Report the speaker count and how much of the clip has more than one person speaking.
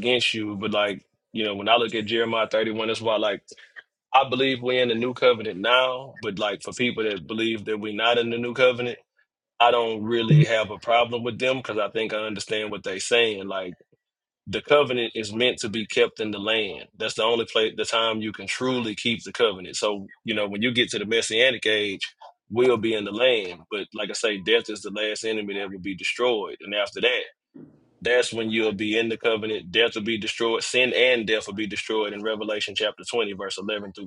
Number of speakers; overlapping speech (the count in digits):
1, no overlap